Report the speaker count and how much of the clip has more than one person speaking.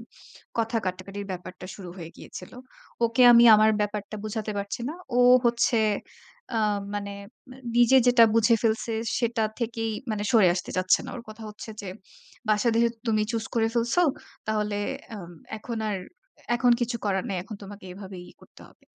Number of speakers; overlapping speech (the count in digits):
1, no overlap